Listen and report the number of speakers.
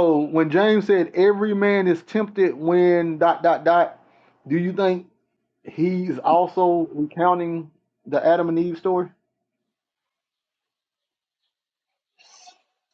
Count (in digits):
1